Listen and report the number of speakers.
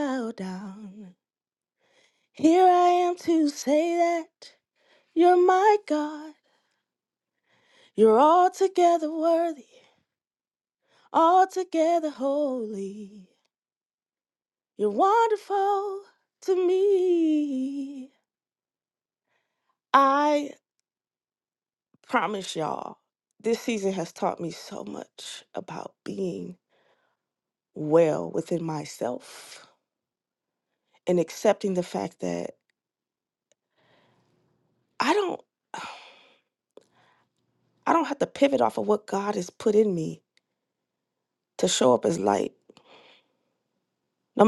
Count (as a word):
one